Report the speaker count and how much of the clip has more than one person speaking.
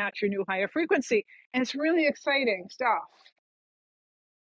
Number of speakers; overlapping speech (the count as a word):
one, no overlap